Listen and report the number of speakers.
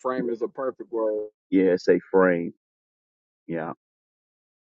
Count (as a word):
two